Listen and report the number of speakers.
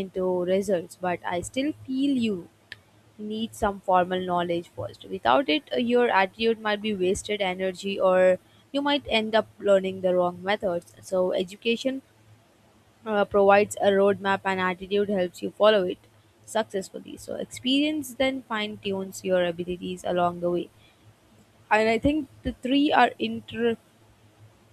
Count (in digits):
1